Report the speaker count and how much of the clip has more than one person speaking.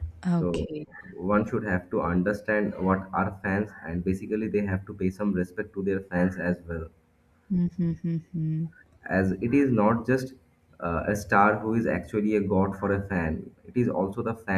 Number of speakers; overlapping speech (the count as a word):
two, about 2%